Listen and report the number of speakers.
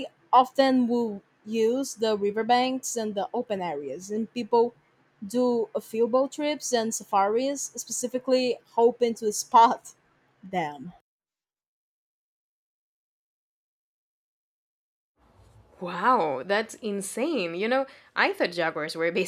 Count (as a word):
two